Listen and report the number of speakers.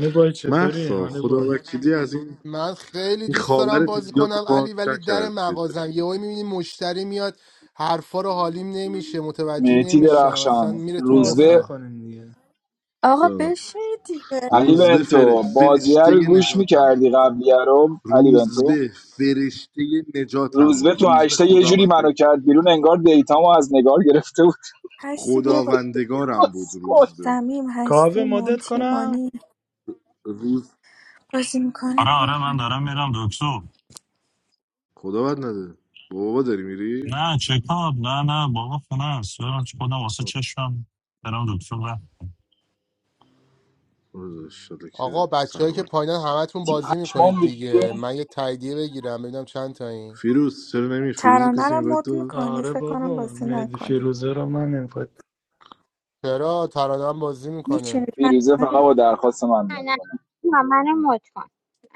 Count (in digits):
7